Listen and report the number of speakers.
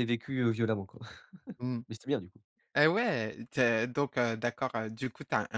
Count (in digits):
2